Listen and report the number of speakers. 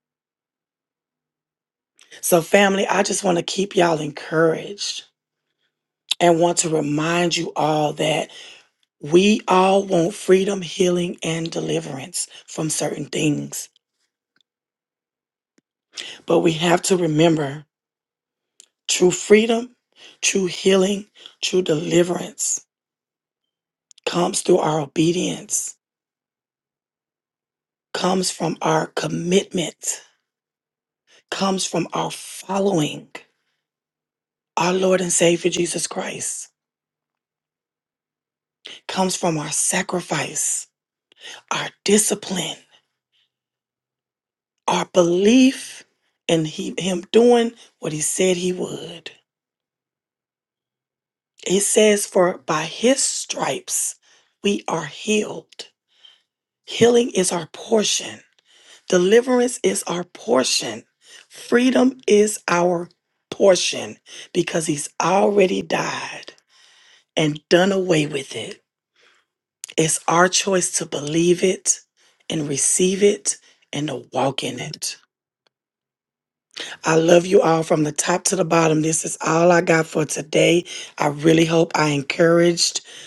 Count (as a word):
one